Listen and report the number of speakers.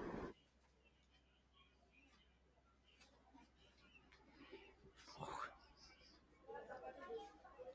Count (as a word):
zero